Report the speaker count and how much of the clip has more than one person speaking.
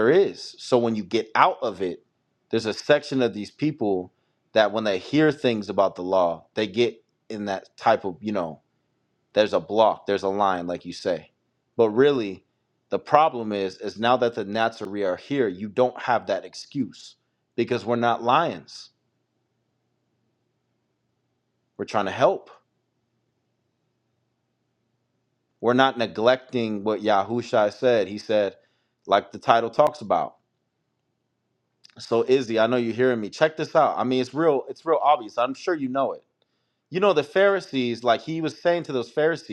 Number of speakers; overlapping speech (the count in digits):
1, no overlap